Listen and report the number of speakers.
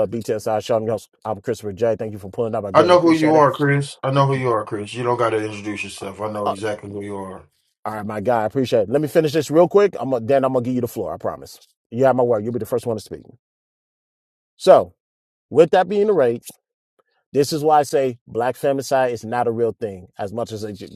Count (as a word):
two